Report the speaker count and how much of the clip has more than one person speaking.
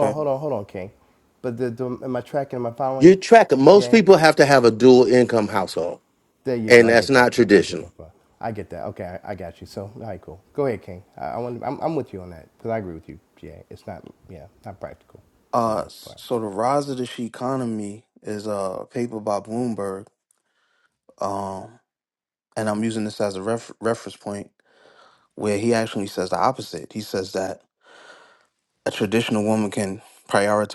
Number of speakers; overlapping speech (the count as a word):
three, about 7%